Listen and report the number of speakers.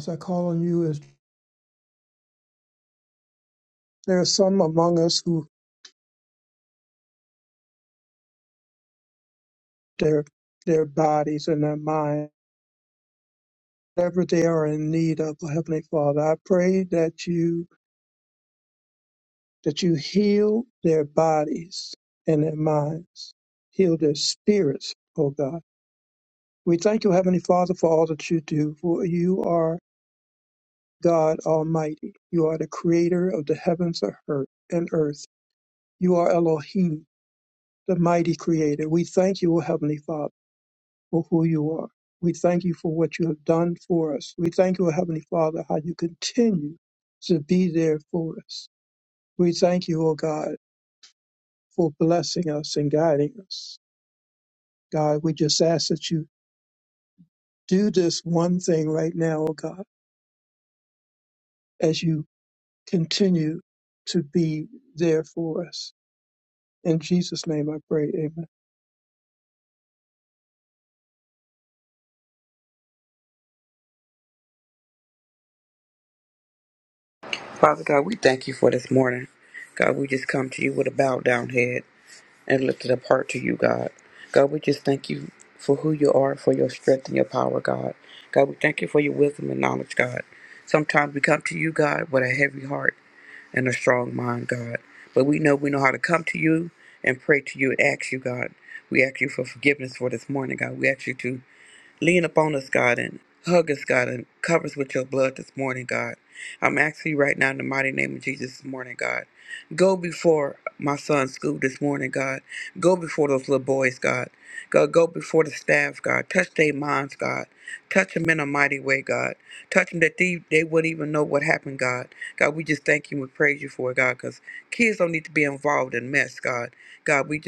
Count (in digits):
2